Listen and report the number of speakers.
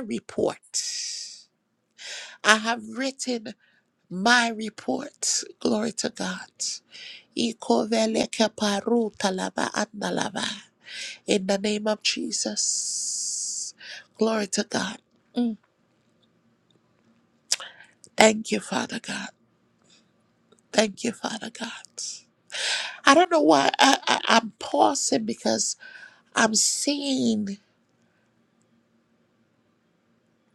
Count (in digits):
1